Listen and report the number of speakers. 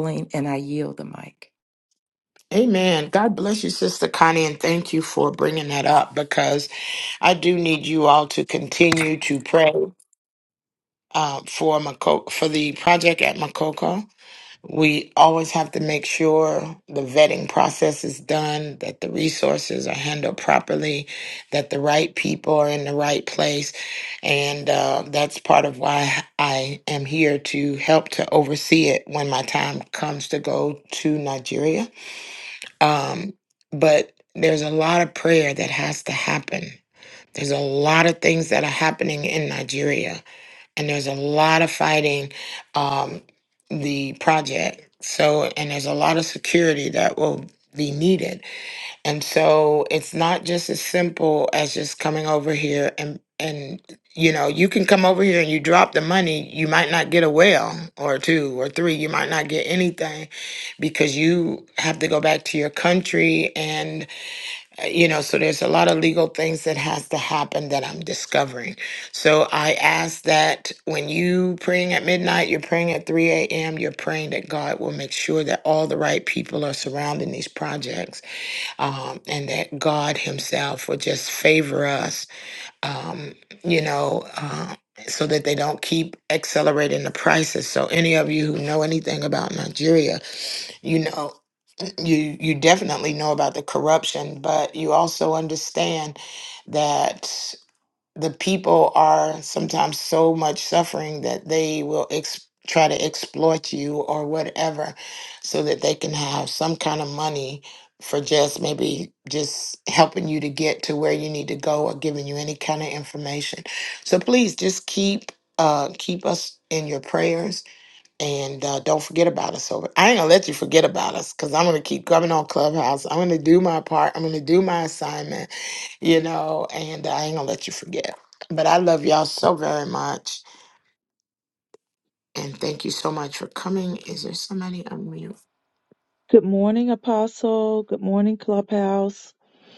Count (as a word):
three